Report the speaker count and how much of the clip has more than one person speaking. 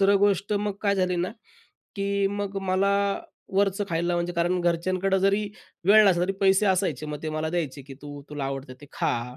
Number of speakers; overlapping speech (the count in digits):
1, no overlap